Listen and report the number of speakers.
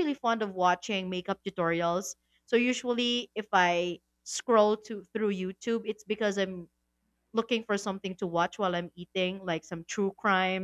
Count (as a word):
one